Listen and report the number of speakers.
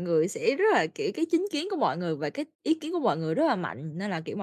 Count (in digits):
1